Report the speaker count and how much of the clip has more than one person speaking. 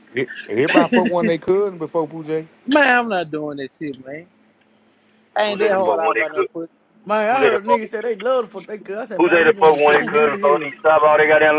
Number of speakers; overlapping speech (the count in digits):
4, about 26%